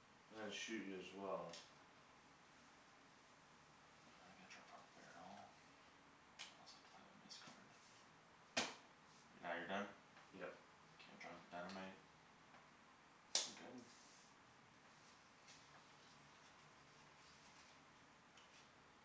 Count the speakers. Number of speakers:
two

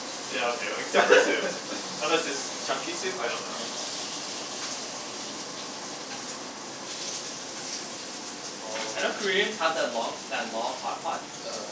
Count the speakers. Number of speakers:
two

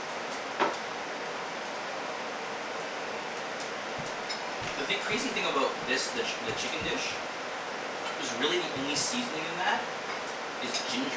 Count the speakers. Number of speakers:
one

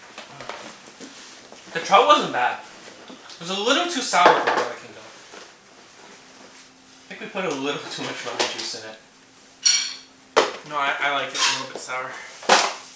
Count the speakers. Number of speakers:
two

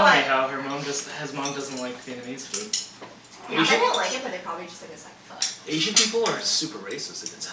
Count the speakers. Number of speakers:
three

